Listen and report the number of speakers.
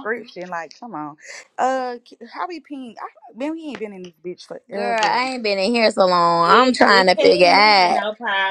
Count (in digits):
3